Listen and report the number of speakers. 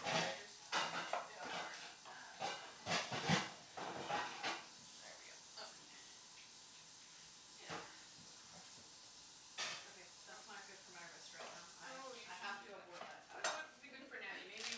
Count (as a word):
two